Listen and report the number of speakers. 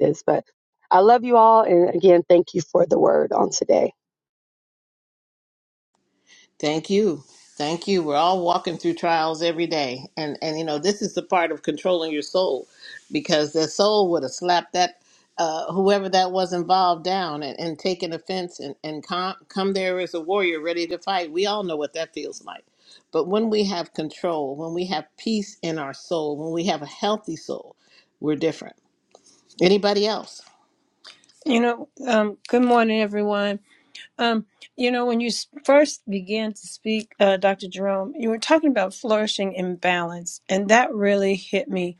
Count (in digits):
3